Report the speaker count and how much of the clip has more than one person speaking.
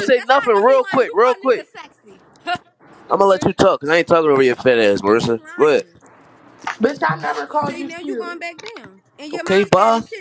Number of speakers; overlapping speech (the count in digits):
3, about 44%